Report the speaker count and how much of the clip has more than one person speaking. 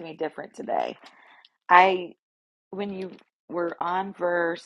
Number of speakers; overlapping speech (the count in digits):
1, no overlap